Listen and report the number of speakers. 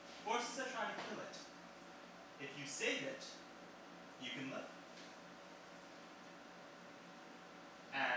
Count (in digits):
1